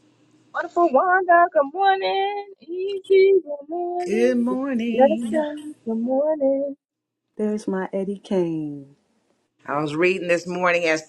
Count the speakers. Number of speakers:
three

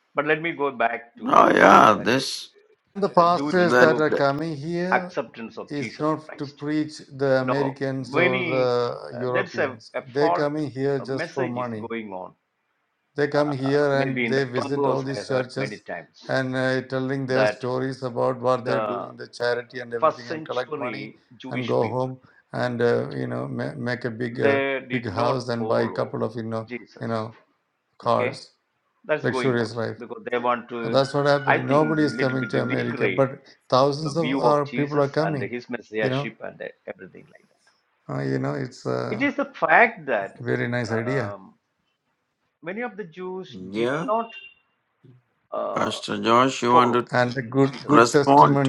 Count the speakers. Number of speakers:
three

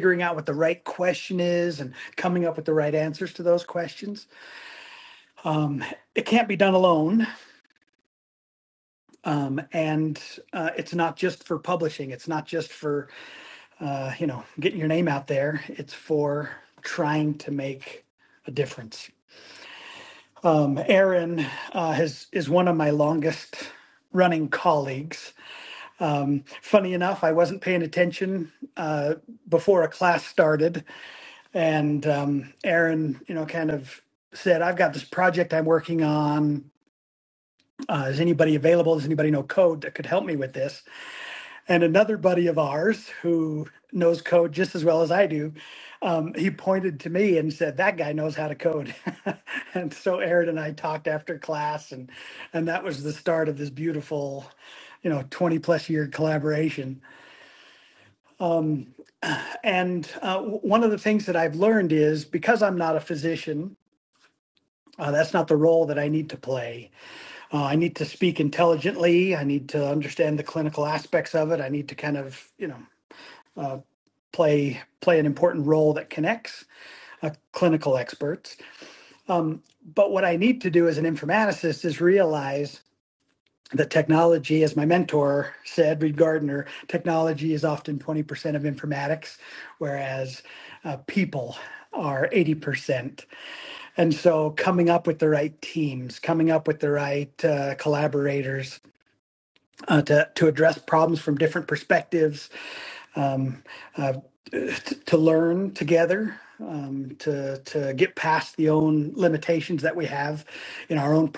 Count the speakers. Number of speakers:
one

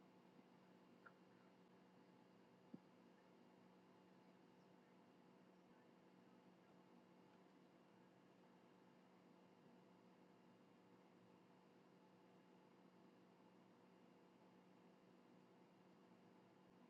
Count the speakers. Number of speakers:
zero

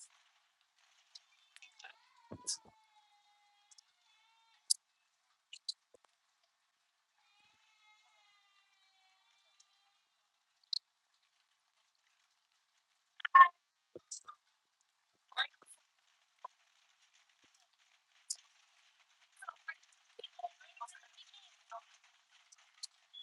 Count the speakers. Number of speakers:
zero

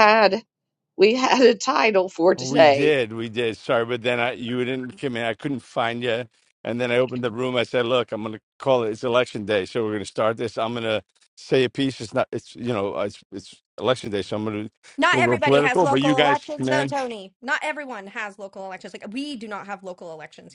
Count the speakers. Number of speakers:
three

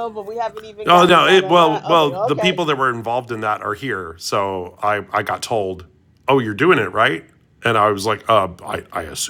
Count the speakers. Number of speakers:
two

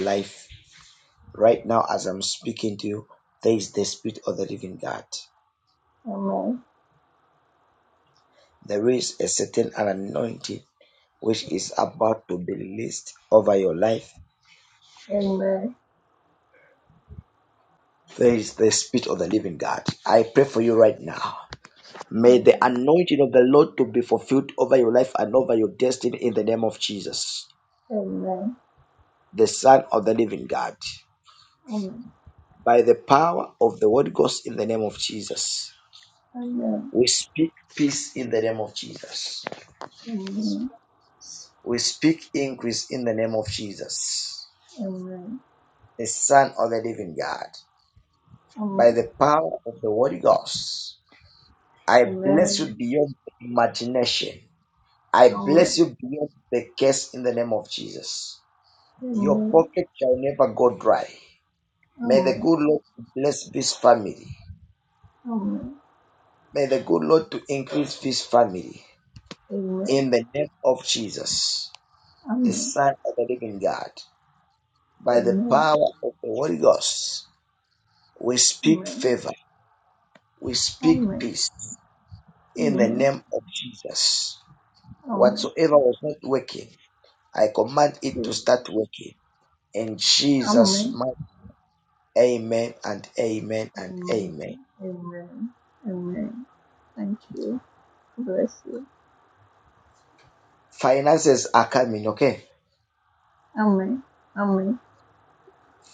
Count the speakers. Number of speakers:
two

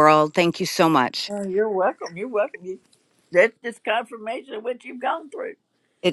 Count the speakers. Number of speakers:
two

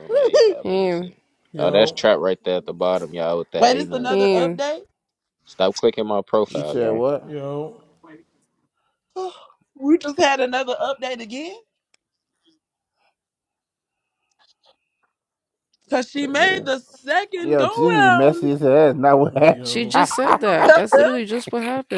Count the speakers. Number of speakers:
five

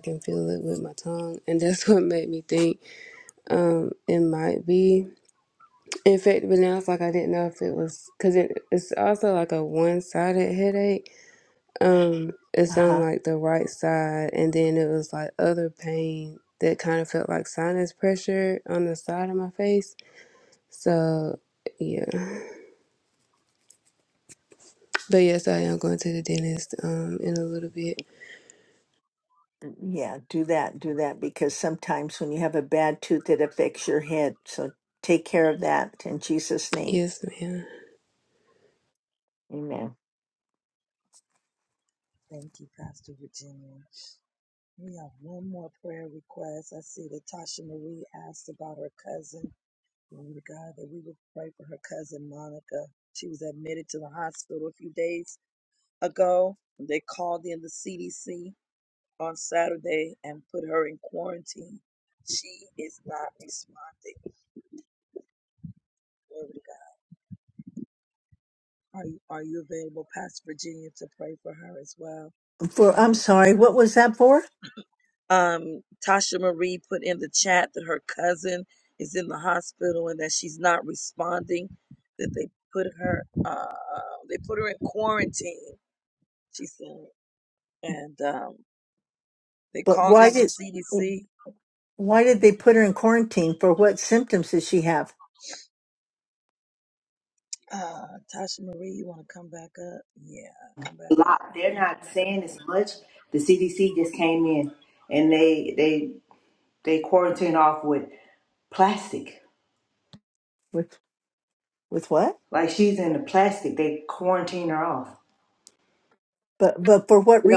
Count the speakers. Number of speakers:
four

